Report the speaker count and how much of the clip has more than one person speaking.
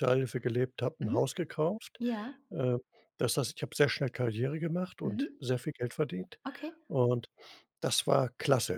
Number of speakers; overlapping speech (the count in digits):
2, about 6%